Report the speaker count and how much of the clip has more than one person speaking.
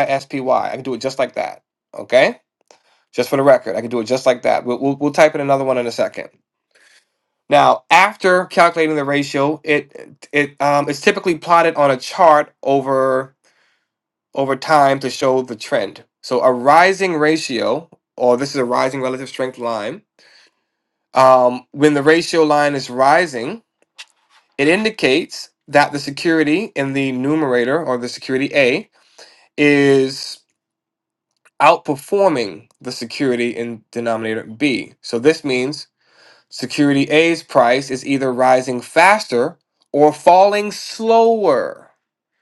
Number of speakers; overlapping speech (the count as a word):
one, no overlap